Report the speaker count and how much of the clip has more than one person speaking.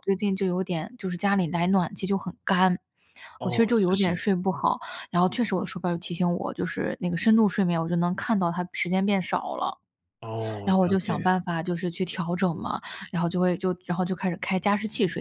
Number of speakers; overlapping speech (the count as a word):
two, about 9%